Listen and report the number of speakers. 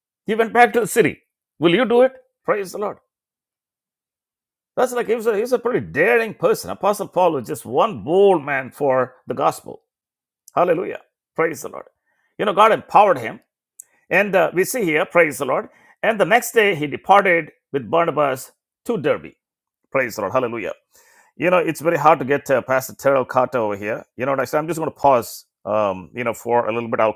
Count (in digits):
1